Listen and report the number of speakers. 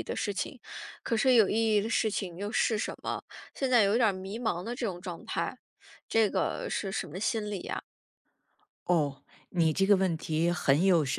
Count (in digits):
2